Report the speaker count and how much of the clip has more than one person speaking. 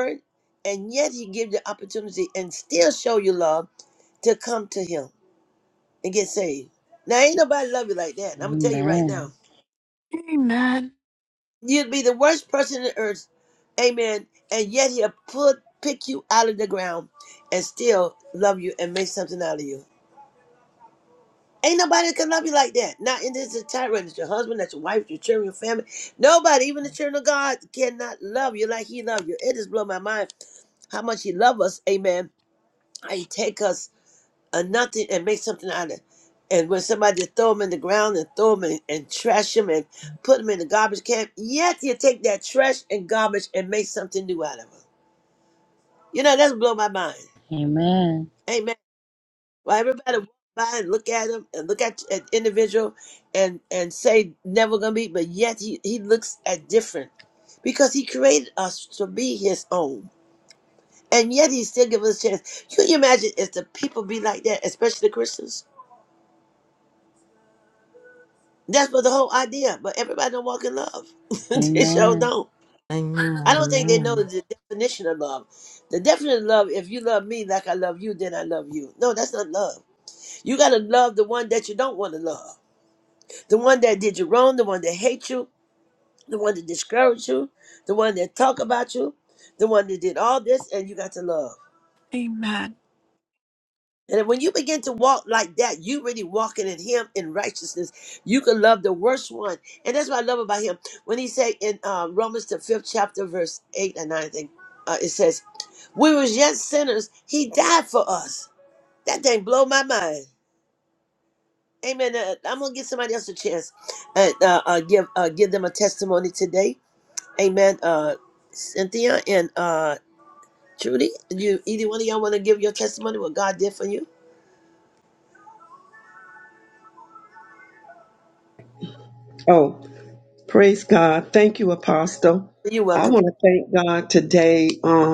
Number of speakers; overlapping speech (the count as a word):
five, about 2%